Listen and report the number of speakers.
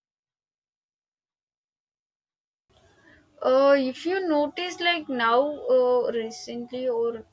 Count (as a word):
one